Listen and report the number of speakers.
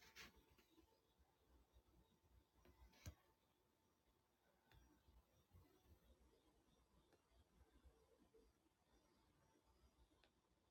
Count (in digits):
0